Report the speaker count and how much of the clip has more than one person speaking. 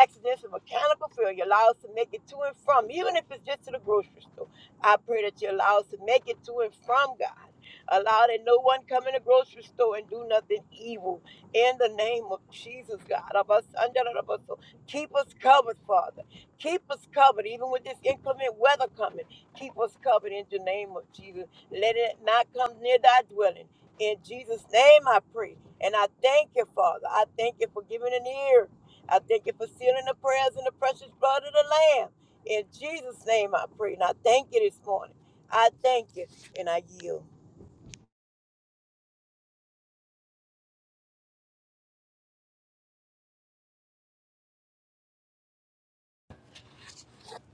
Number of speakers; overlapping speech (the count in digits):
1, no overlap